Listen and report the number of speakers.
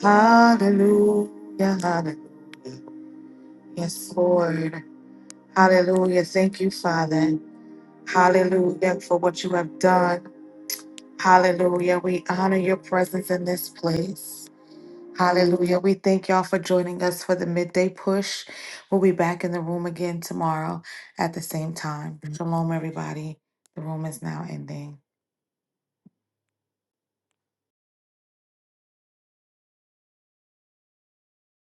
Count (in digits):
1